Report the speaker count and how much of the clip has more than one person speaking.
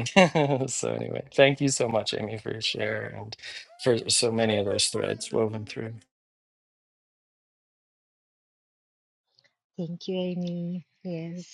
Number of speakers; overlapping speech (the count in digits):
2, no overlap